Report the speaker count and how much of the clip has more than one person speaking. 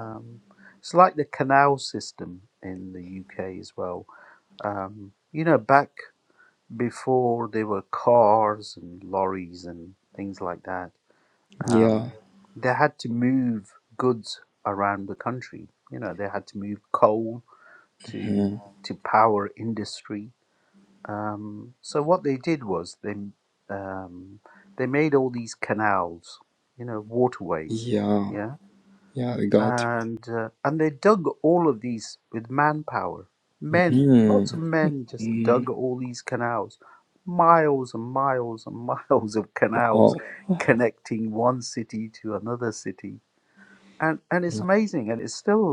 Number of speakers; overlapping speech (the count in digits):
2, about 6%